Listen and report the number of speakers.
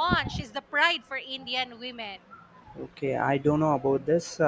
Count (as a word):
two